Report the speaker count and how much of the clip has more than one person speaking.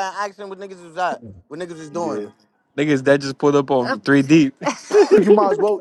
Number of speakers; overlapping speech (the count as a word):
three, about 6%